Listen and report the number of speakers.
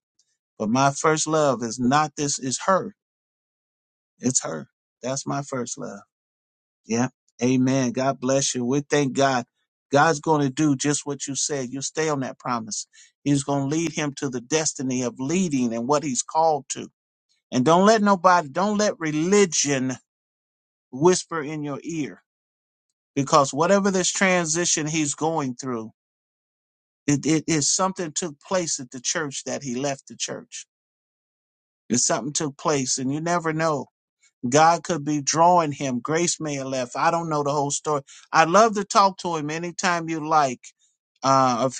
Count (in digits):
1